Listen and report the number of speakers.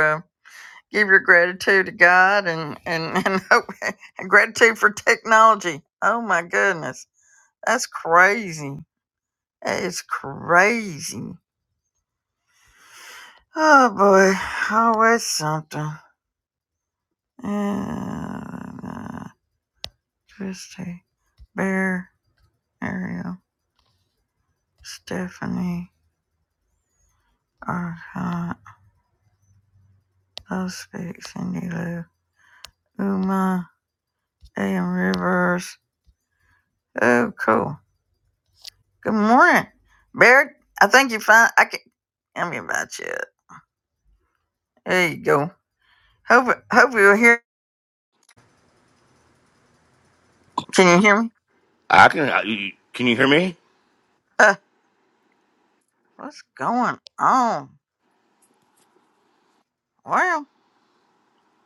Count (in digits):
2